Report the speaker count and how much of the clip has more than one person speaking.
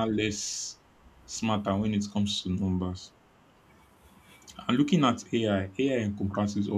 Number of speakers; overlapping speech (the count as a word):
one, no overlap